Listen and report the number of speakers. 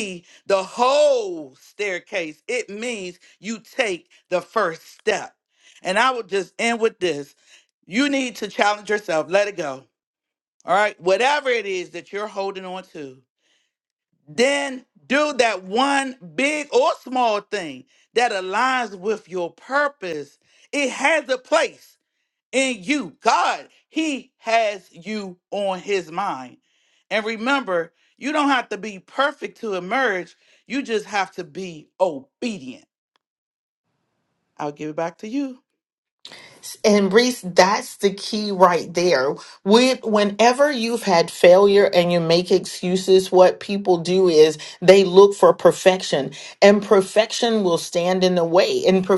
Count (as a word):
two